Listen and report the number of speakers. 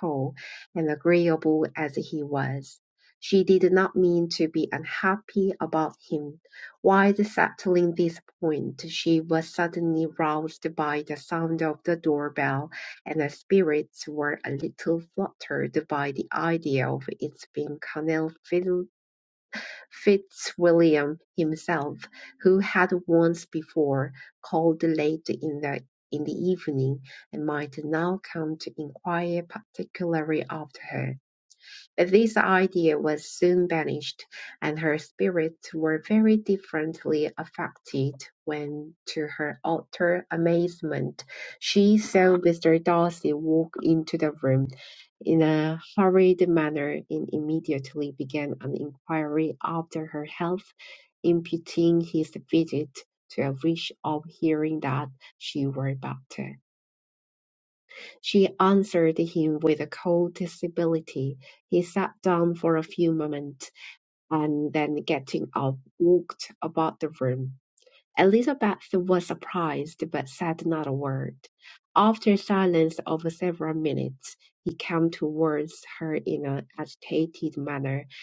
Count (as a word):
one